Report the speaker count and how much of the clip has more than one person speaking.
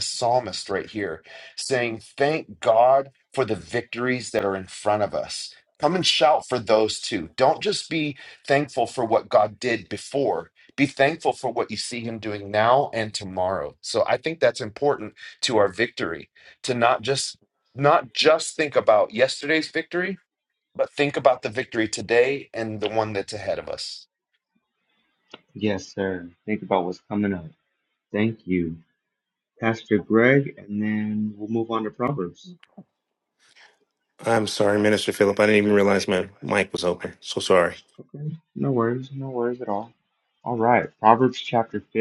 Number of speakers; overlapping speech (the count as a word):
three, no overlap